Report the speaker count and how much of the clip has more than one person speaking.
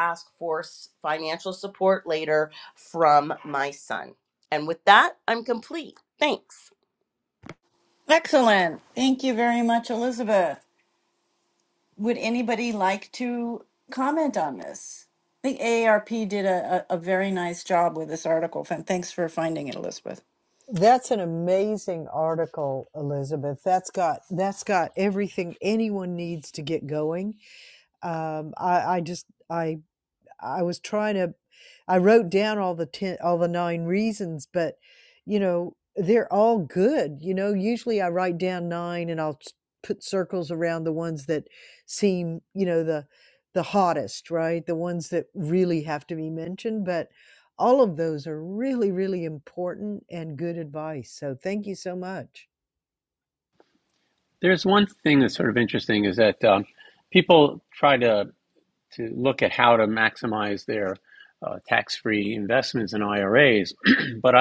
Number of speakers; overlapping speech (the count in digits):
4, no overlap